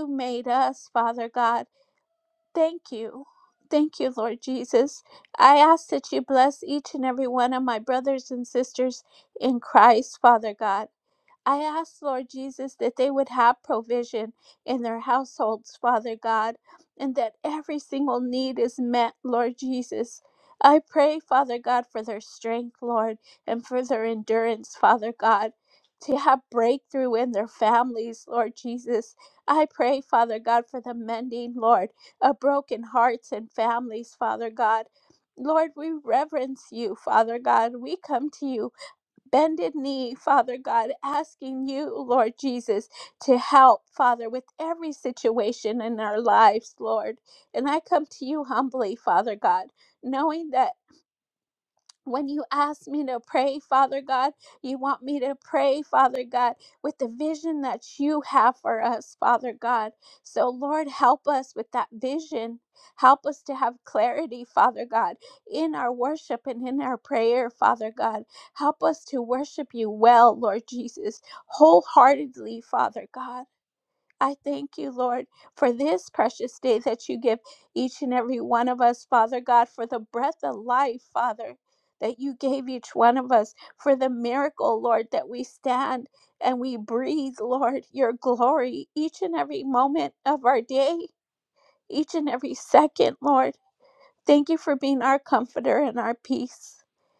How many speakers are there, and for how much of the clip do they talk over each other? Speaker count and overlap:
one, no overlap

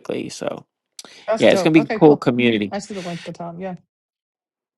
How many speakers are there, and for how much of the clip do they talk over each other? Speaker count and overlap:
two, about 16%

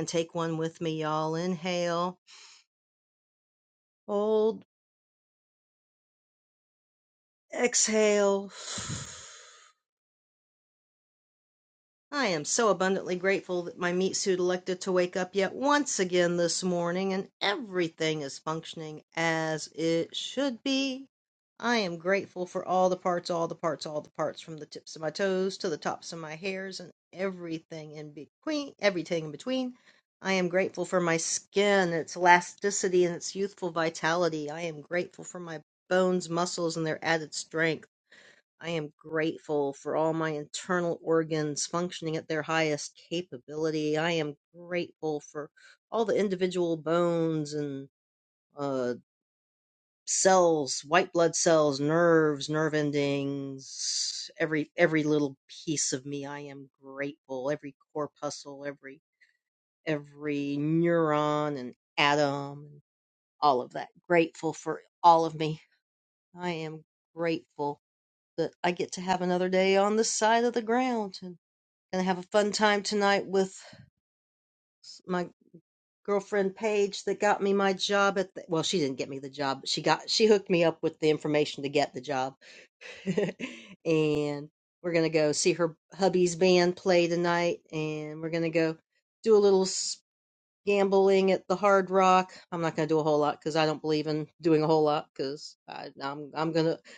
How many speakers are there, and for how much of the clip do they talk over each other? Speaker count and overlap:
one, no overlap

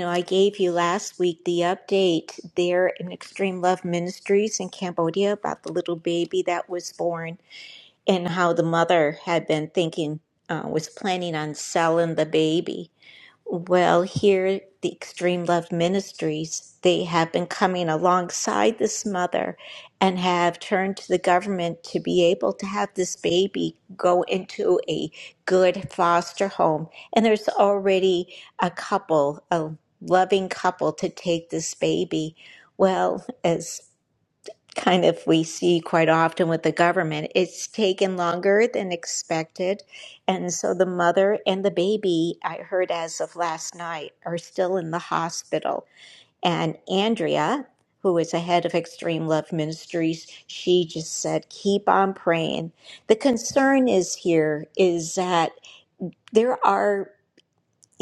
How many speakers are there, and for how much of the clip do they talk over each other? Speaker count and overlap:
one, no overlap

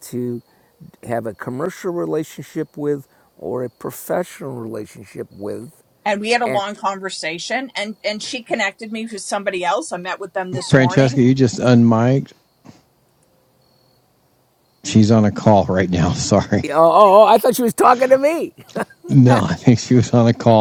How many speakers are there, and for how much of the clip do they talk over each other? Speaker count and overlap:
three, about 4%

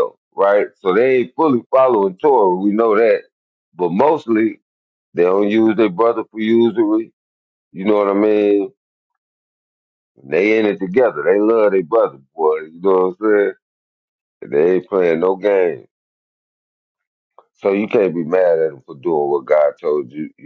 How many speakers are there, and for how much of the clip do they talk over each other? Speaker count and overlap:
one, no overlap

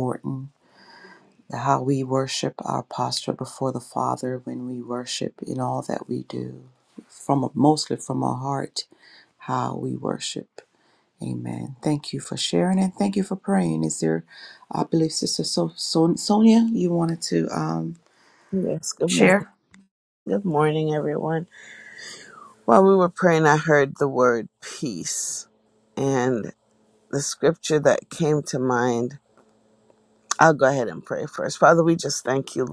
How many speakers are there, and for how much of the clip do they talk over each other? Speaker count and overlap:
two, about 1%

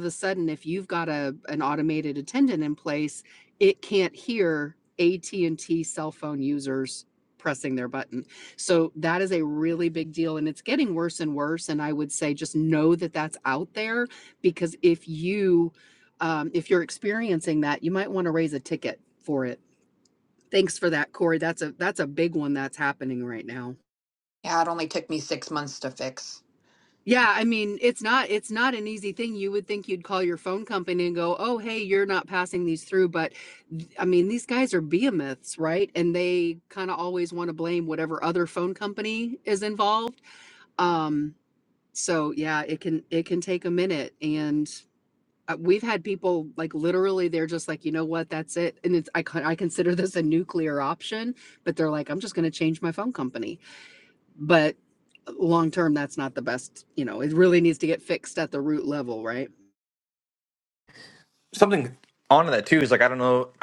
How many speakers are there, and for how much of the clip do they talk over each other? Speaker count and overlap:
three, no overlap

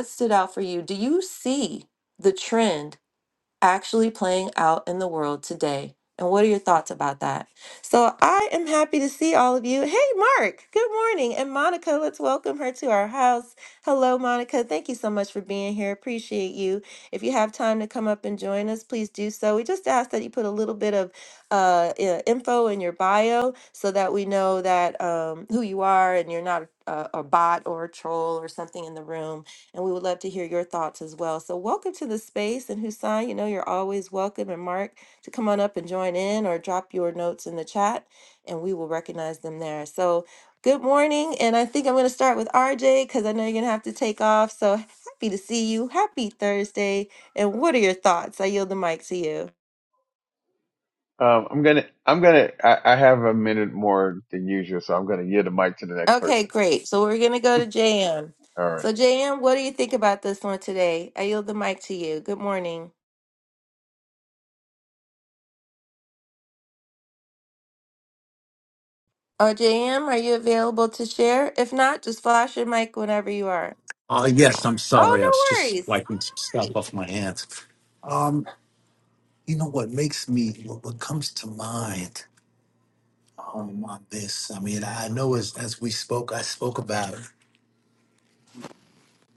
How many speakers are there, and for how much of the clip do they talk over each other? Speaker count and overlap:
three, about 1%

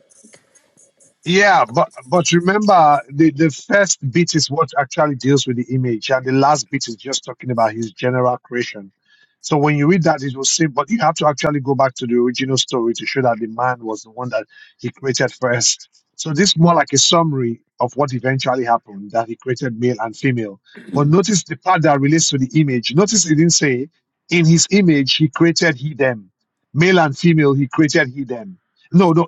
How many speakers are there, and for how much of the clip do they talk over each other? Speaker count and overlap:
one, no overlap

